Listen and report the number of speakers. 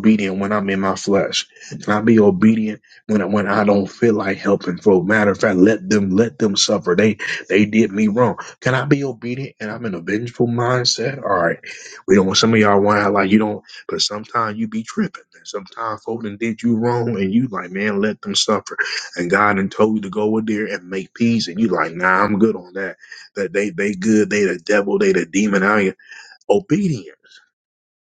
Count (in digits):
1